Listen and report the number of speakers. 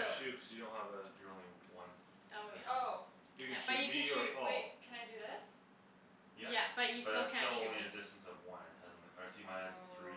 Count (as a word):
four